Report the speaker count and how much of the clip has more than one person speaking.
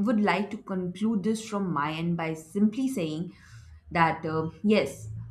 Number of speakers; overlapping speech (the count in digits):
1, no overlap